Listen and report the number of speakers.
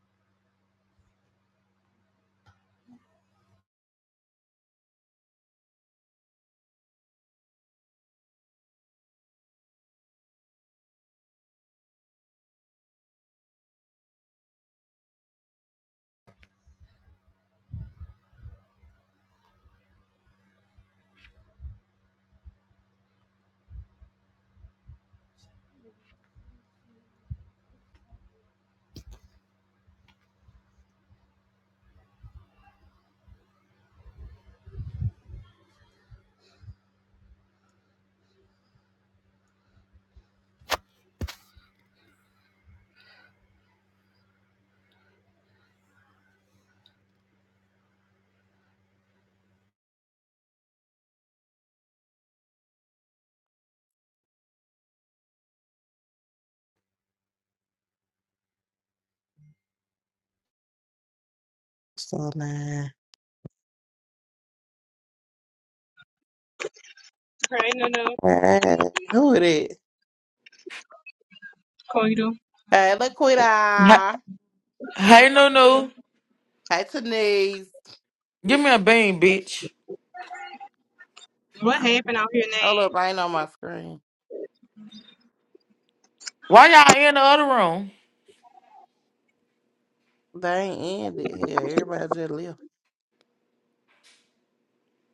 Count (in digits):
3